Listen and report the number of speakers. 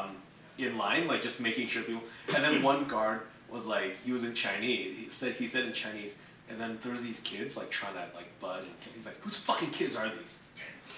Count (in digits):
1